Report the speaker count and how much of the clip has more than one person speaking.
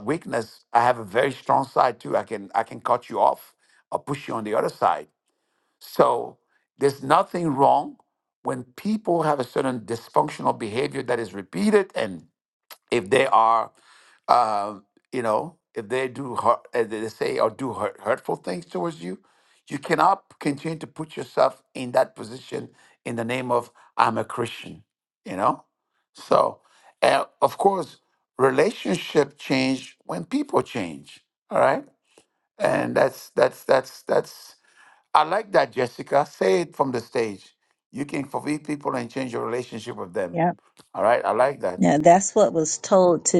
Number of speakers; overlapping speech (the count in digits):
2, under 1%